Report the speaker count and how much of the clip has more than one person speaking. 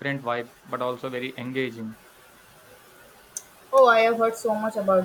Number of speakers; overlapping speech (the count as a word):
two, no overlap